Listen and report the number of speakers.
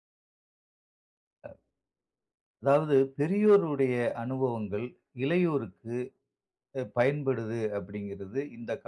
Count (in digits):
1